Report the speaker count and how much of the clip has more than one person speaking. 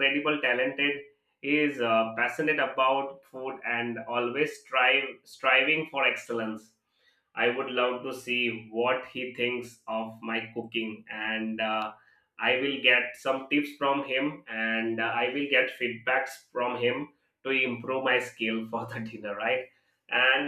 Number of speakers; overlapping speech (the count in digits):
1, no overlap